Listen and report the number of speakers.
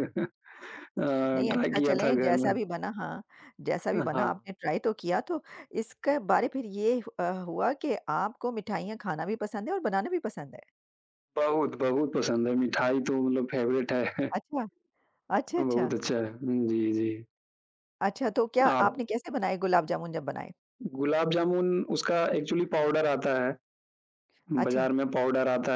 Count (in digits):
2